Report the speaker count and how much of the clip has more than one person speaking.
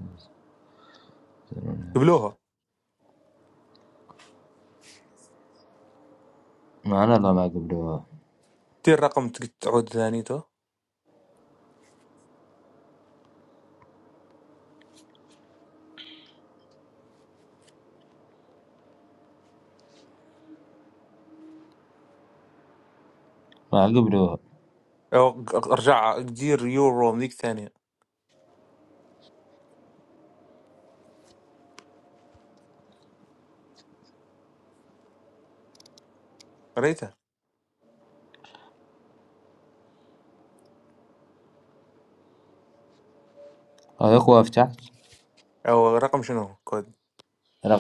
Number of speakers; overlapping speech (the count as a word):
two, no overlap